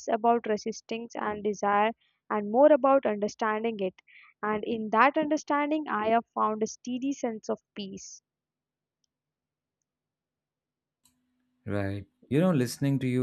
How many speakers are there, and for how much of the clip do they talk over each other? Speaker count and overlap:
two, no overlap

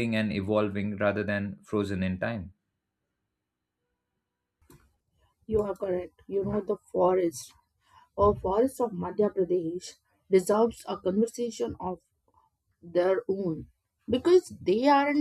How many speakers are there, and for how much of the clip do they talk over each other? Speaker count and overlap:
two, no overlap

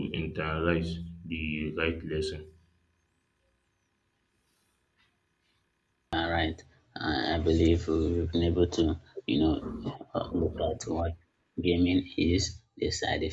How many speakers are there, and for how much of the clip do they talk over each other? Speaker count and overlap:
two, no overlap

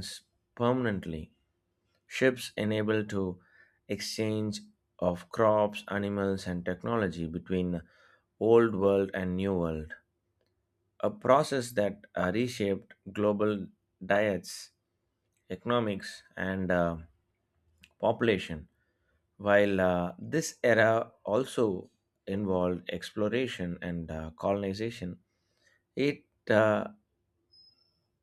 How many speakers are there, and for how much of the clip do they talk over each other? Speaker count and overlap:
one, no overlap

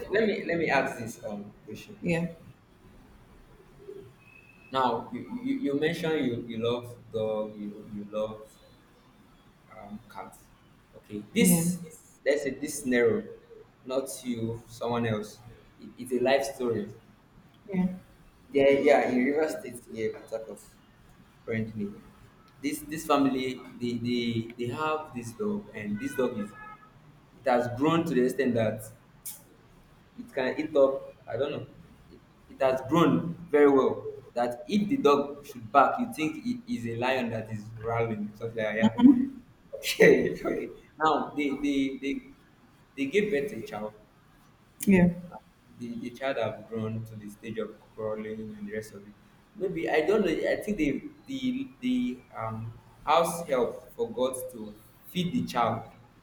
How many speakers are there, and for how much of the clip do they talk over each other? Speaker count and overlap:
two, about 1%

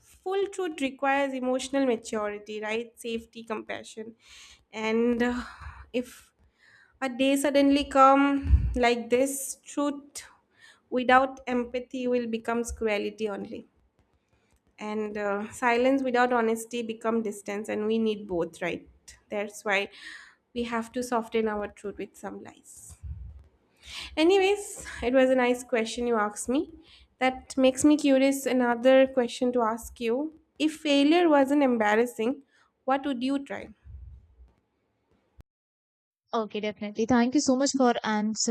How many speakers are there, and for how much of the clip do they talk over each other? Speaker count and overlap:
two, no overlap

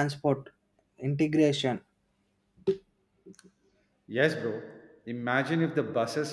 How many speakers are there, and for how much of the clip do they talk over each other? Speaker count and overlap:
two, no overlap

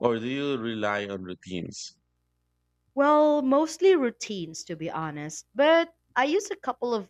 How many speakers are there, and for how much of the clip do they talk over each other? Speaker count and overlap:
two, no overlap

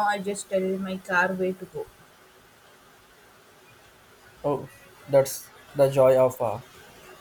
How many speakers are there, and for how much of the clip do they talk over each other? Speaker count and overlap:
two, no overlap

